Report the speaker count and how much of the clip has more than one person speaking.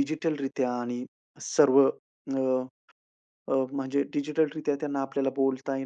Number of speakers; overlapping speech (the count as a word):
one, no overlap